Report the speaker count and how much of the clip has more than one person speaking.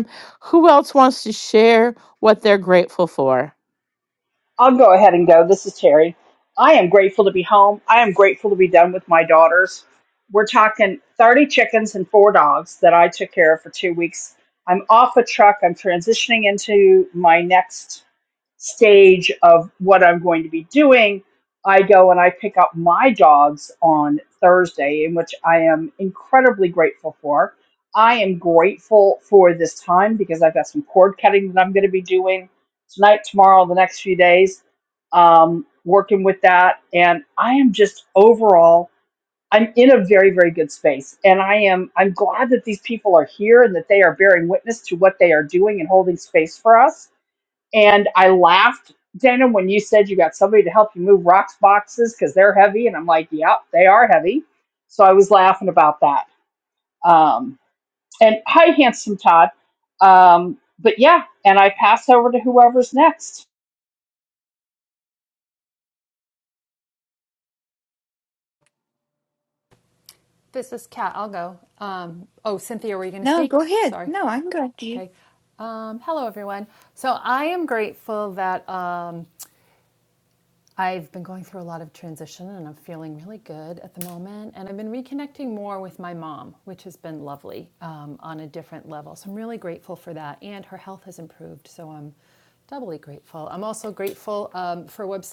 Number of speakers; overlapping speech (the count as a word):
four, about 1%